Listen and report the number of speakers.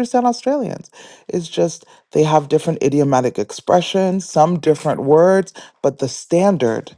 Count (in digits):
1